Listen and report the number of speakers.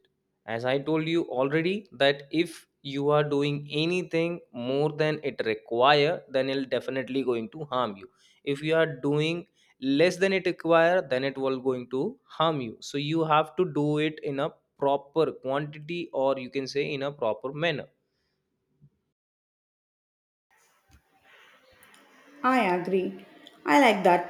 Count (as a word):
two